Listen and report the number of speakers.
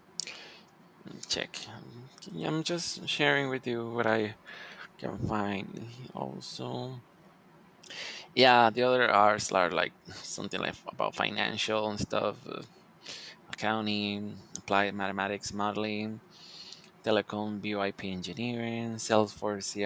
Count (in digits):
1